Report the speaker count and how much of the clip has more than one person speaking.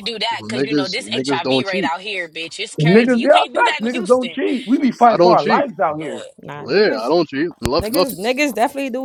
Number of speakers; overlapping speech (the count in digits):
4, about 53%